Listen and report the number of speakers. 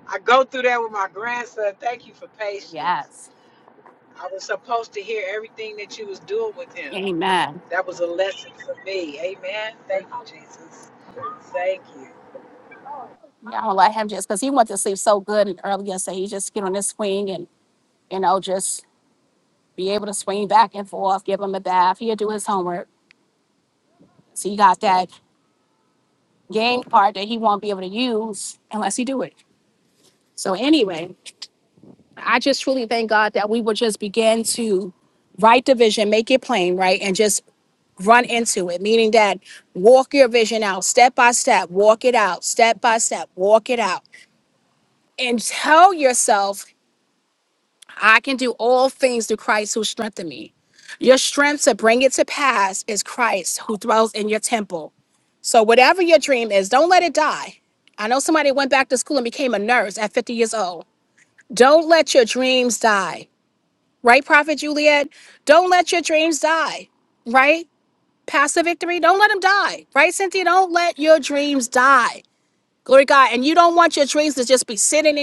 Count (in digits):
2